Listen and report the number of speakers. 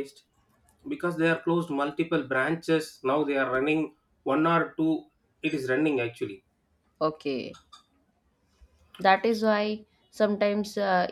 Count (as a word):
two